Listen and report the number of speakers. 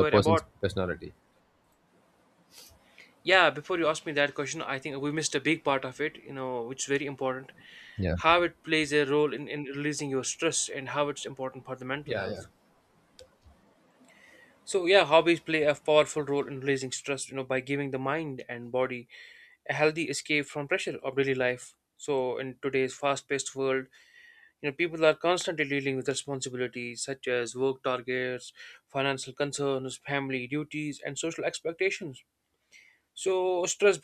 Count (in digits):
2